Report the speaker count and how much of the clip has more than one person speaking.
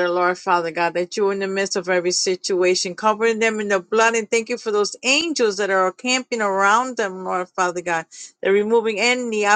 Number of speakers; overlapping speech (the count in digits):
1, no overlap